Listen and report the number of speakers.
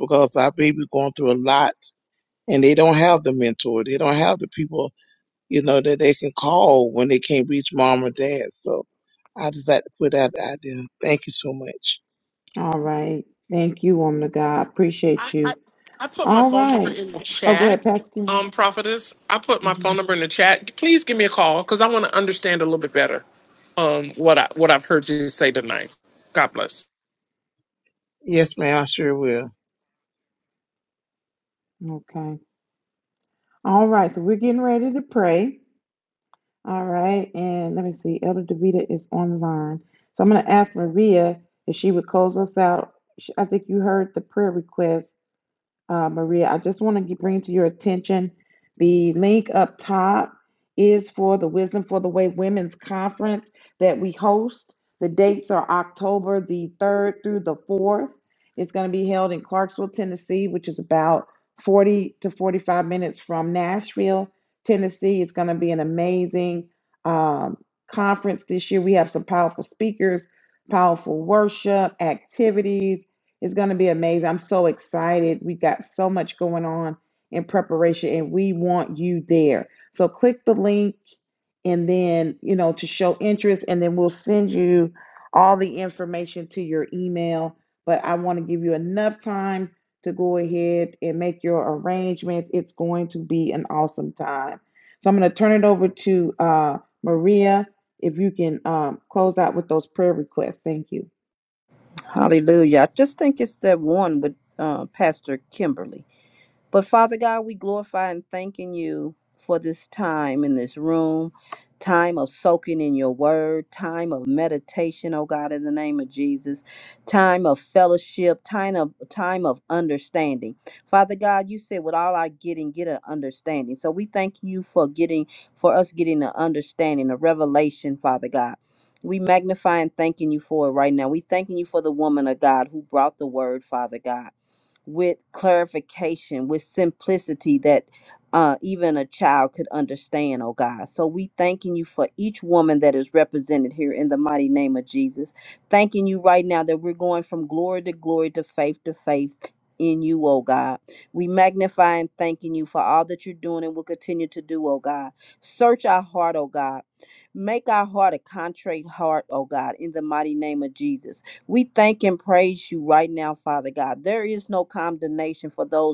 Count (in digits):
4